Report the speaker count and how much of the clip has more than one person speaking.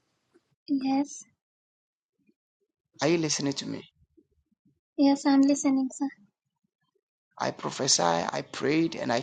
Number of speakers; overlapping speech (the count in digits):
2, no overlap